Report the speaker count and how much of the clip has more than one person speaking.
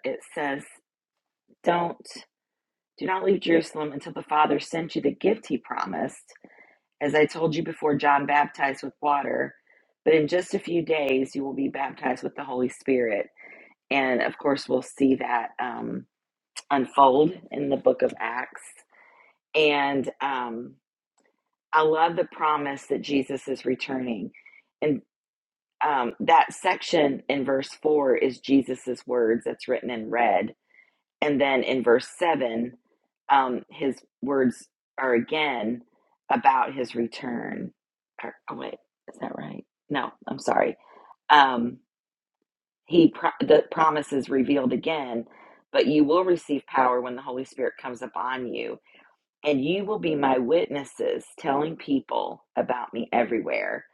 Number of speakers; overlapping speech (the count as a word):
one, no overlap